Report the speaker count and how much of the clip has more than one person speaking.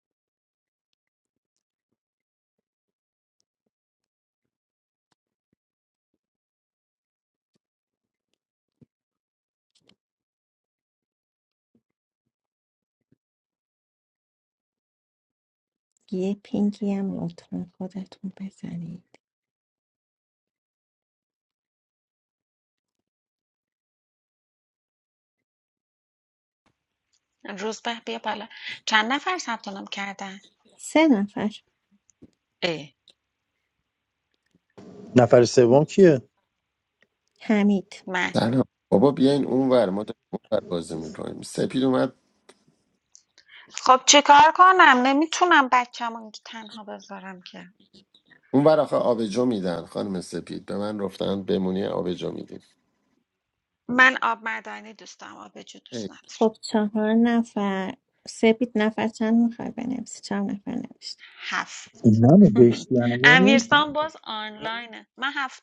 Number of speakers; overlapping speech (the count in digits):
4, about 1%